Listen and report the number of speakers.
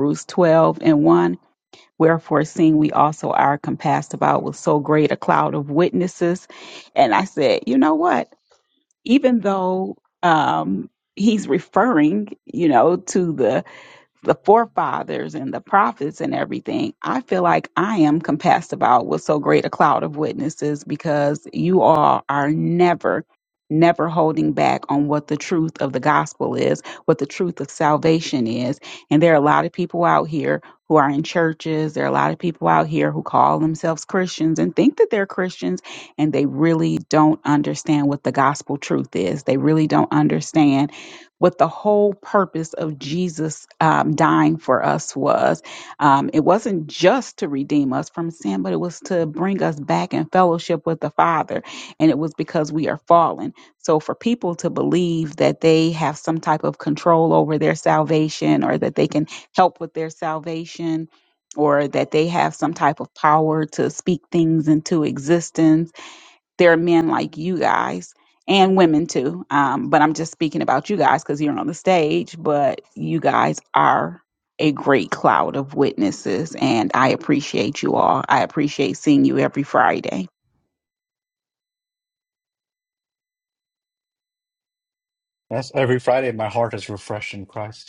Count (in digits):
2